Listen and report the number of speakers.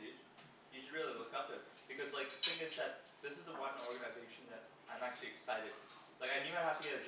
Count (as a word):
one